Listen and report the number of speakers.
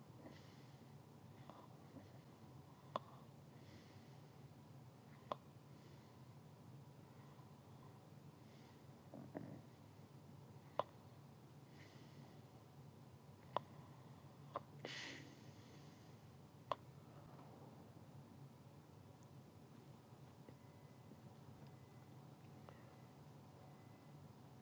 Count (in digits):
0